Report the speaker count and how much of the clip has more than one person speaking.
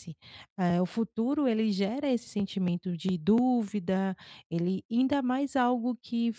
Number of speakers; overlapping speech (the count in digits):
1, no overlap